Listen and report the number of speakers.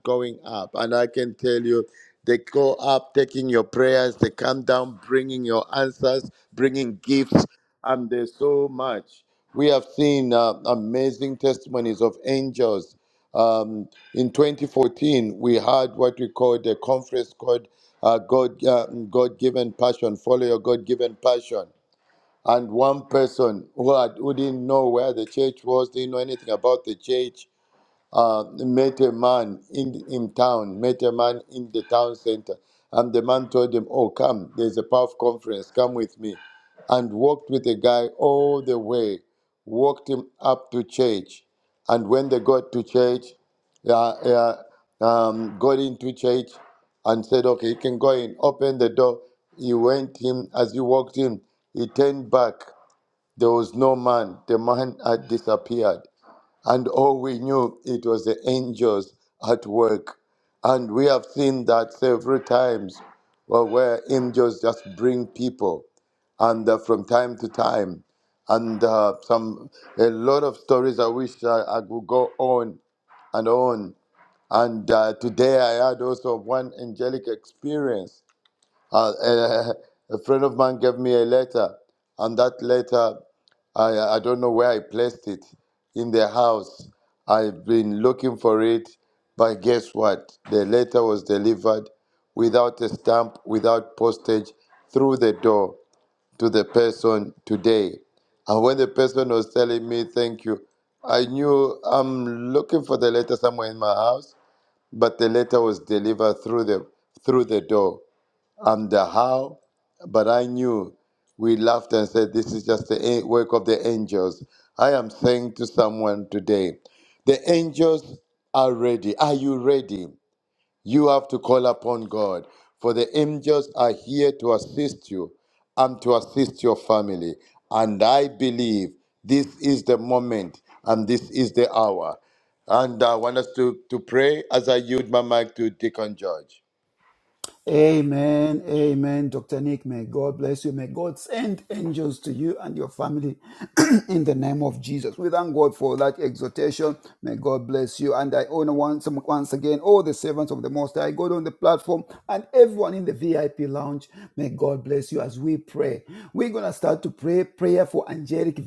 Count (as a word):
two